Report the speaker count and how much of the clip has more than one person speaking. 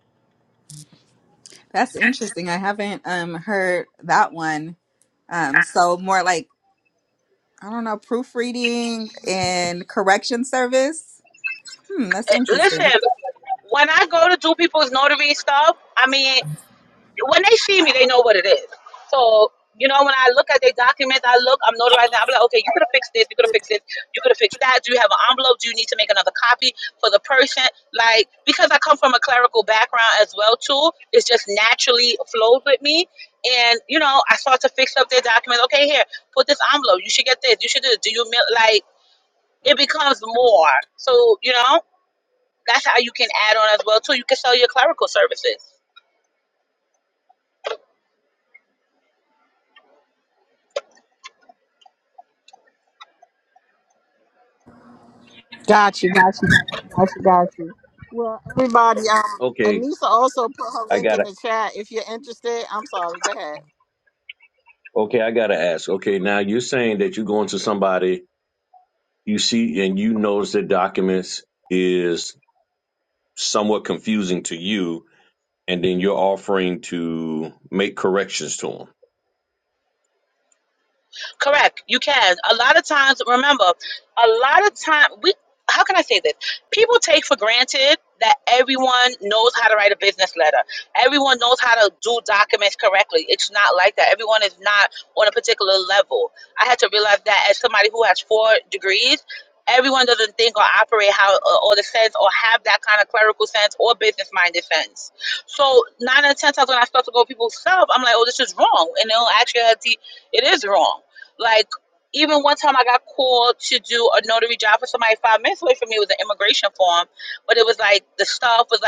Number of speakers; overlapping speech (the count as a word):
four, about 1%